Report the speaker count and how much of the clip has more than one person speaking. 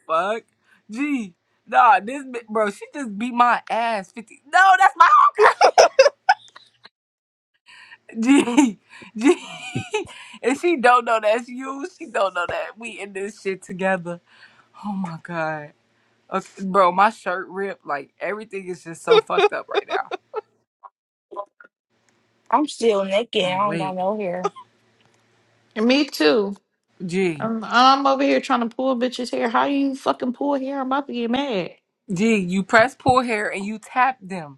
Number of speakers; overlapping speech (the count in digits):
3, about 2%